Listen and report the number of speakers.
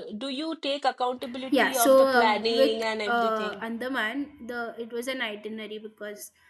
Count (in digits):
2